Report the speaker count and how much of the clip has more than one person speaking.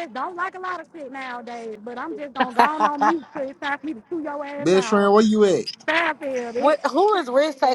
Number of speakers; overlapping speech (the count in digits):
3, about 10%